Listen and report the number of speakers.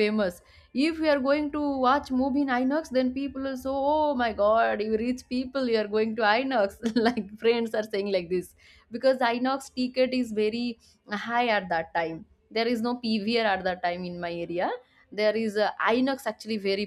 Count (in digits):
1